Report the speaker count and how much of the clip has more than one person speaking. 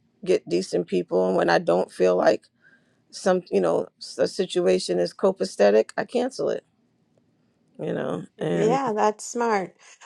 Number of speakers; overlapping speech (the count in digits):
2, about 4%